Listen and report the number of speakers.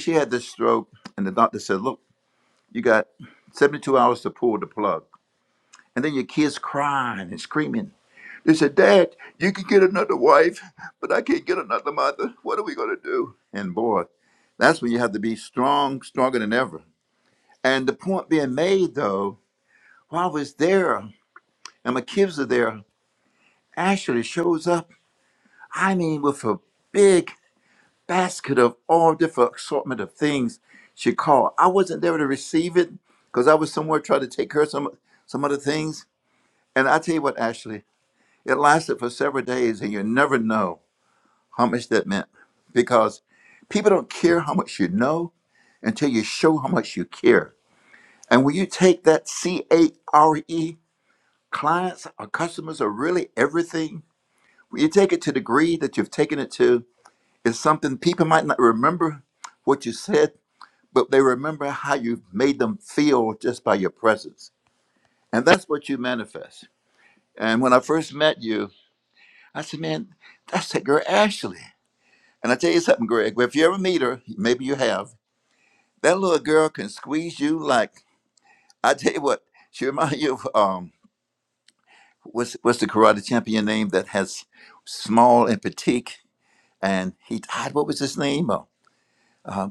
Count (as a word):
one